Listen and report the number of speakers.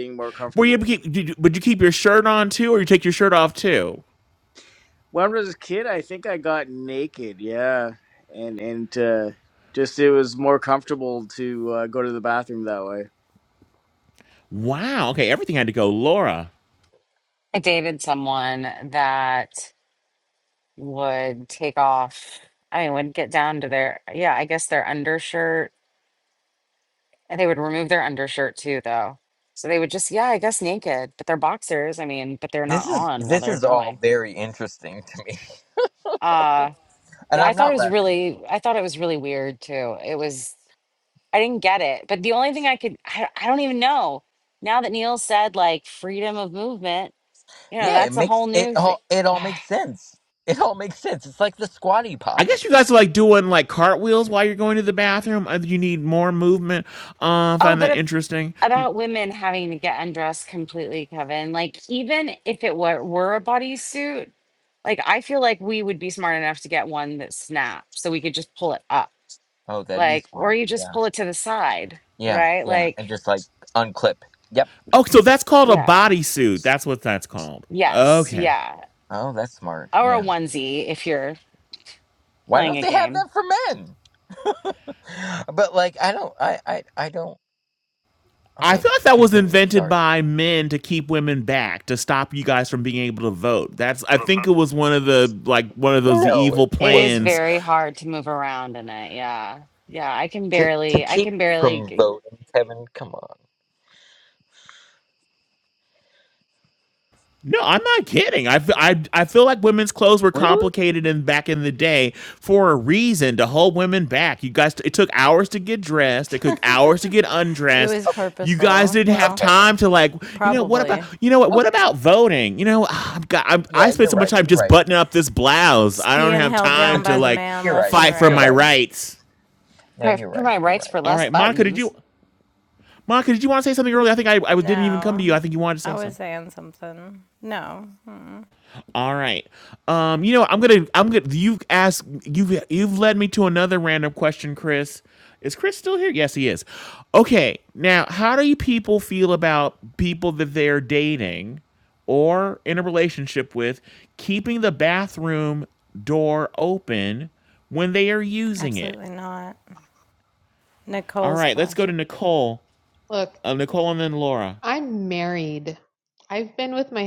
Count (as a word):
six